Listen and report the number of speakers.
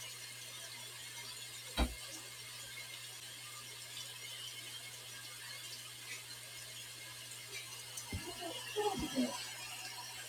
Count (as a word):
zero